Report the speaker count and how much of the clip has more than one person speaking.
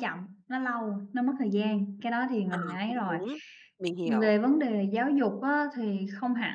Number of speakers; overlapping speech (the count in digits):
2, about 13%